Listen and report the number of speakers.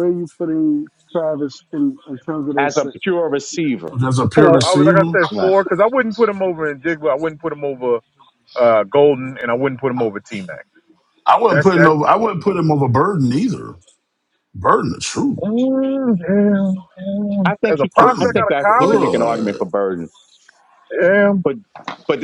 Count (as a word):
four